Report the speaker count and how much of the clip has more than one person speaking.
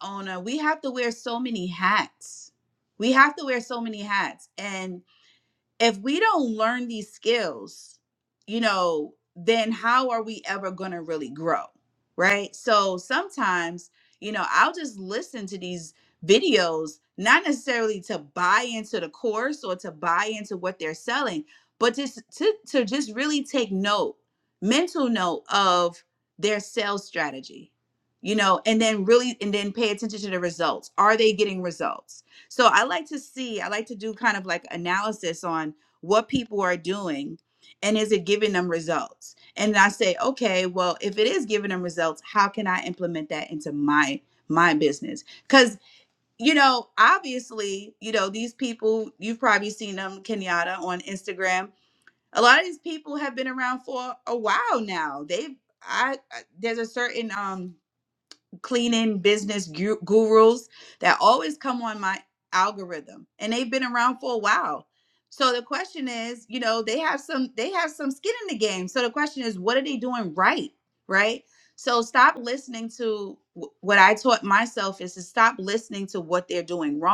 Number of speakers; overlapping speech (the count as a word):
one, no overlap